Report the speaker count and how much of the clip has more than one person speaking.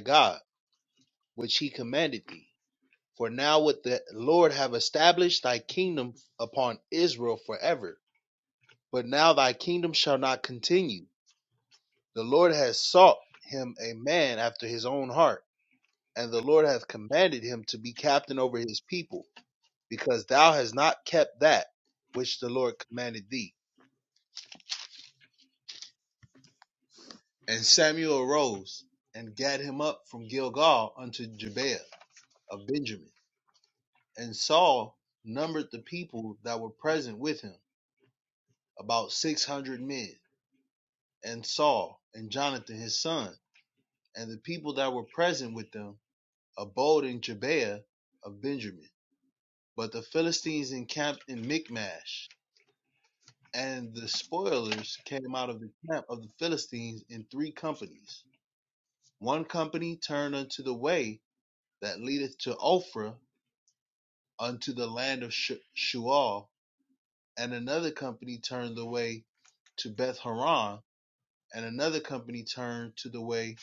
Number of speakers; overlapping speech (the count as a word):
one, no overlap